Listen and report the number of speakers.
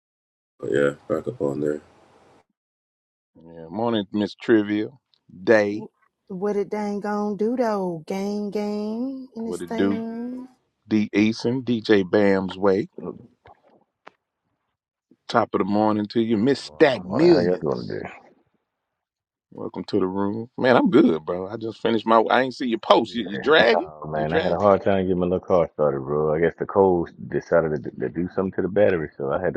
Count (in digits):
4